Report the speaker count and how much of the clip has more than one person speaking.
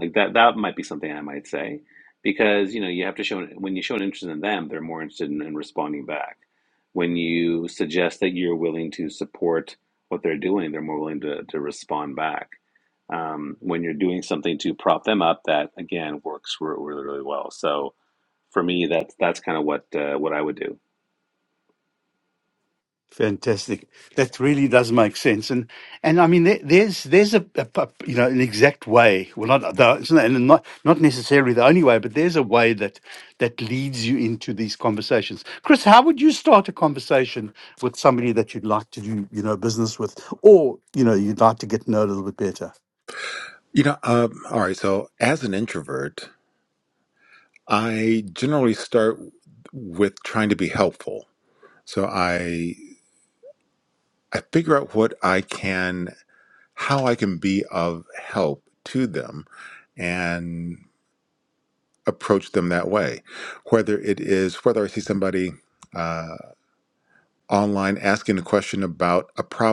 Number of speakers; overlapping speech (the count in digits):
3, no overlap